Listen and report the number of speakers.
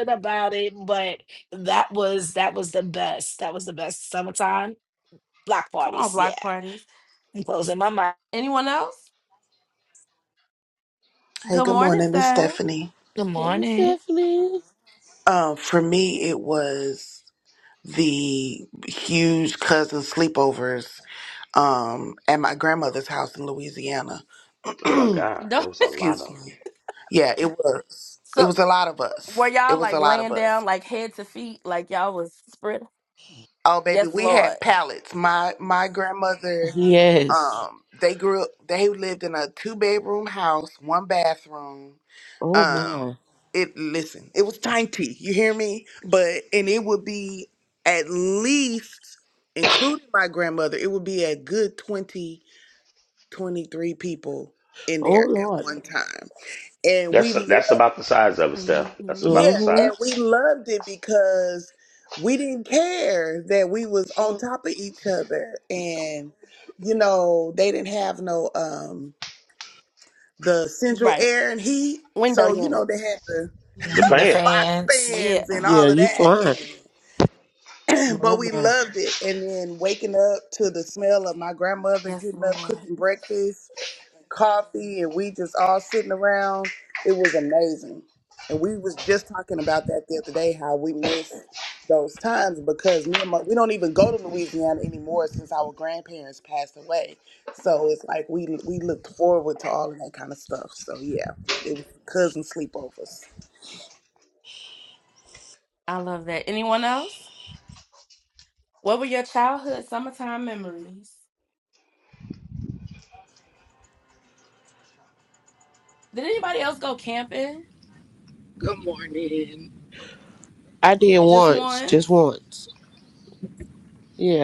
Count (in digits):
6